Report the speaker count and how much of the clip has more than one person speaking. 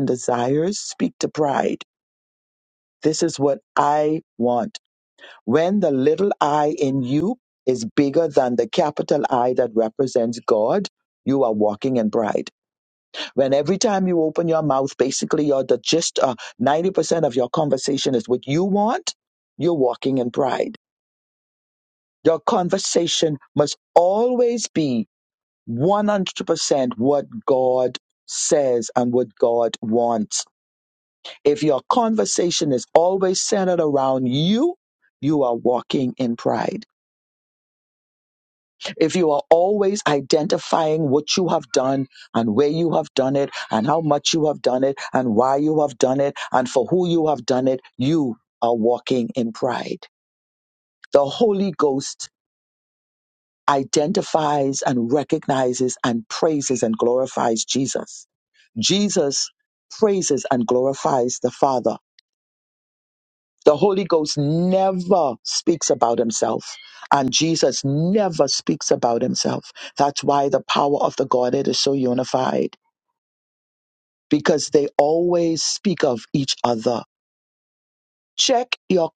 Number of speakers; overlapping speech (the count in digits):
1, no overlap